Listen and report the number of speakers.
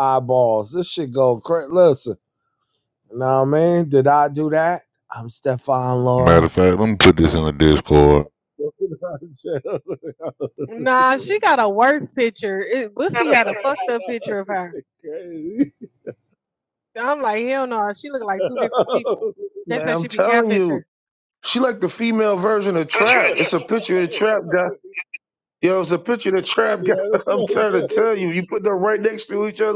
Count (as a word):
four